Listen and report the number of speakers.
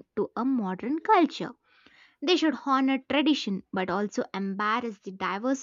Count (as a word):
one